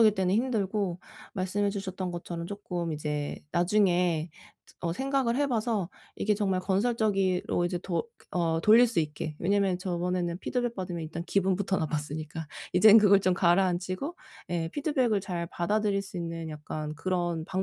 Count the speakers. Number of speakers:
1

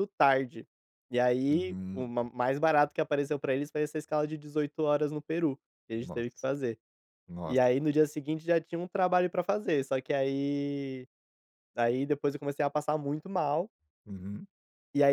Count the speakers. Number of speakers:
2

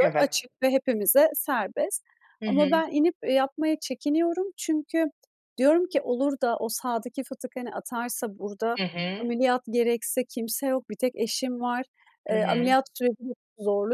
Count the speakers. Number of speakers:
2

